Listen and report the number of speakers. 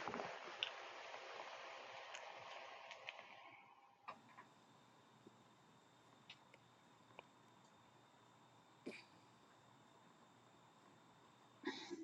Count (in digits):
0